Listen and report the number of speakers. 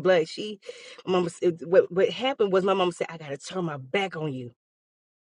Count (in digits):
1